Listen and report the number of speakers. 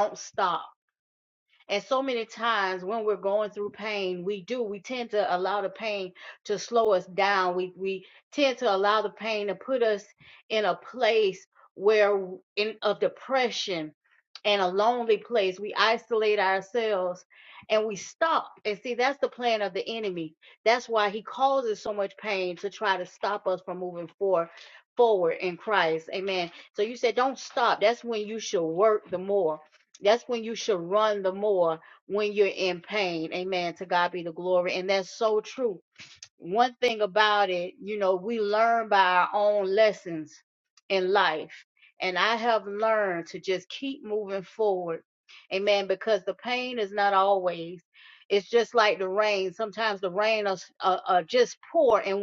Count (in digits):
1